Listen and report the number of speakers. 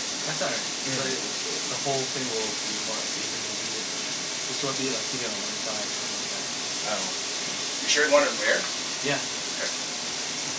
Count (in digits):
2